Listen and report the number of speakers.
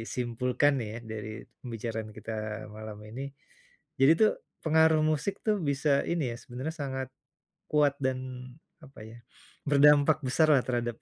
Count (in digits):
1